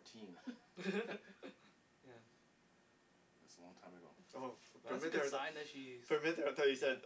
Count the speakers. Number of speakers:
3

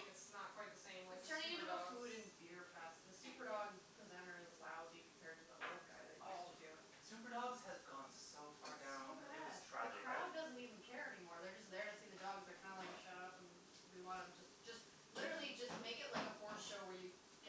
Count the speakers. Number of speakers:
3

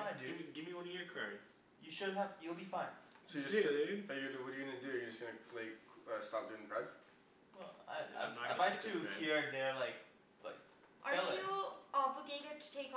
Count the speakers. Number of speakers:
4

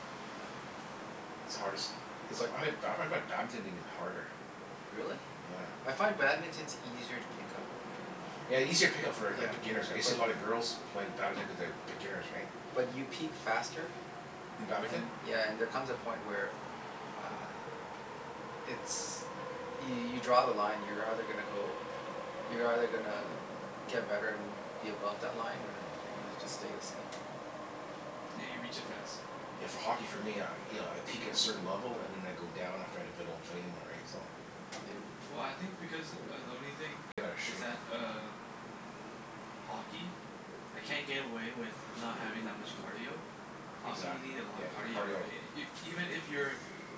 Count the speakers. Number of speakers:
3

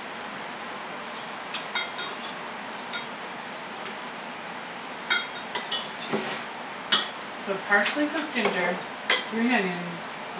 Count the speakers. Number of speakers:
1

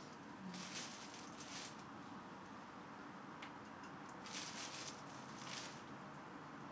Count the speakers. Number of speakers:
0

